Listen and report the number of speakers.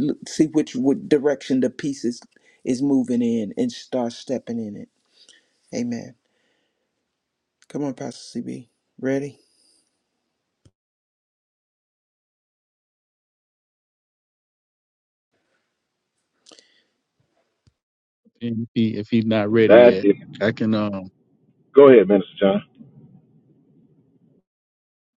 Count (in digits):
3